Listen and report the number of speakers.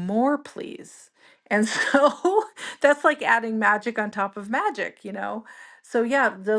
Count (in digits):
1